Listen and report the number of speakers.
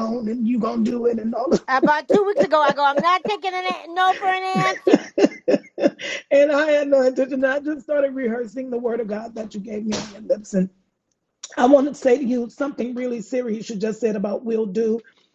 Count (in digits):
2